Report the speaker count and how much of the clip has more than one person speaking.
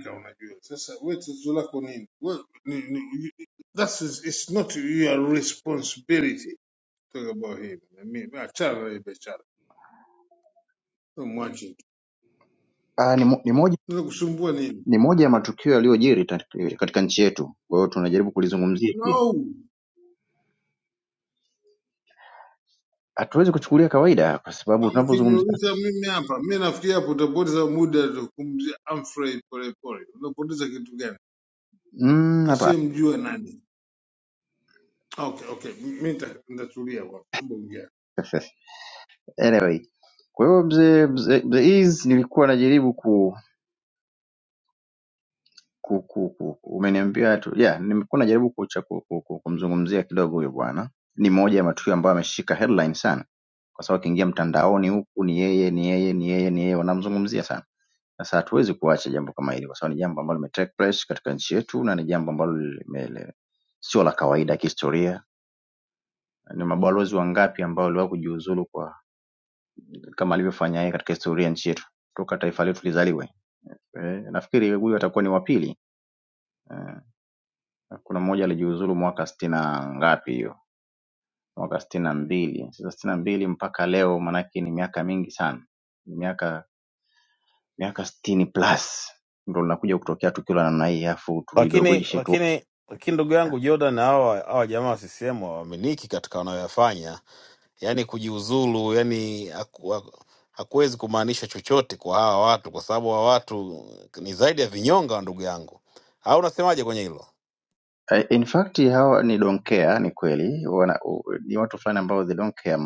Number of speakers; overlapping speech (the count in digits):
3, about 2%